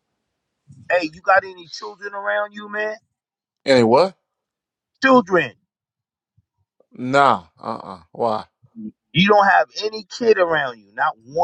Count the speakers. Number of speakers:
two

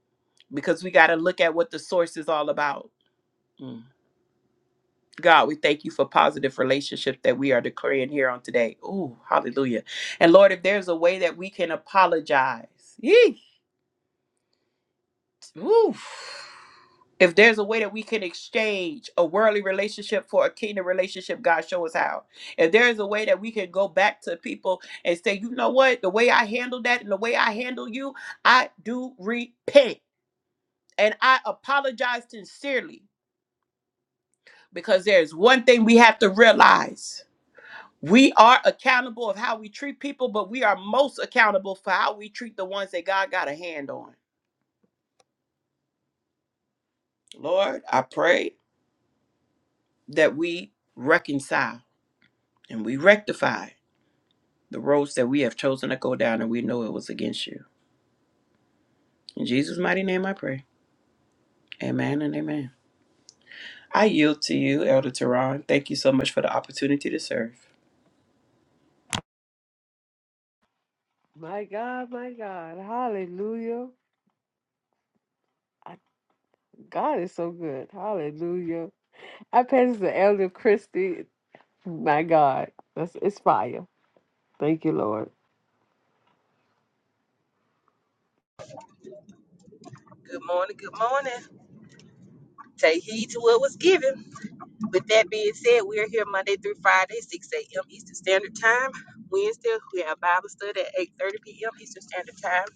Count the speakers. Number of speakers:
three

